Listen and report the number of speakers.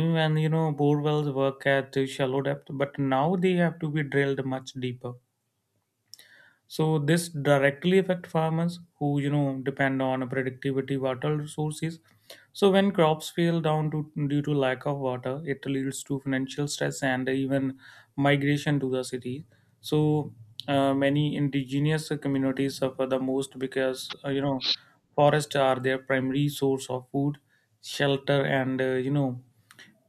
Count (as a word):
one